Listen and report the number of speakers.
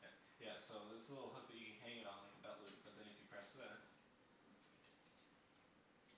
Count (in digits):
1